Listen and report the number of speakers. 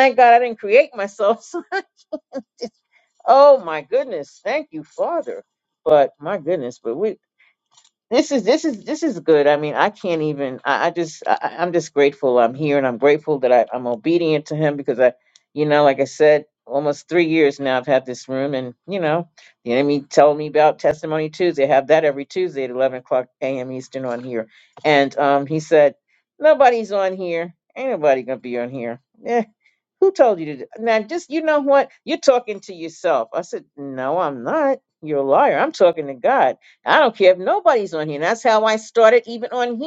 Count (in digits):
1